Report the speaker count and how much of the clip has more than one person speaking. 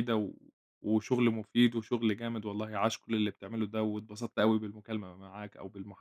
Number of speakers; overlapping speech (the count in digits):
1, no overlap